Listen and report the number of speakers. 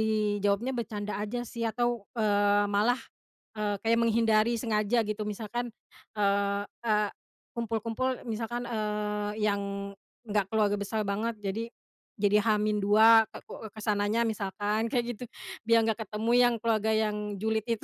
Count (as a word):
one